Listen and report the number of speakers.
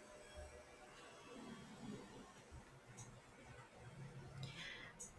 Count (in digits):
0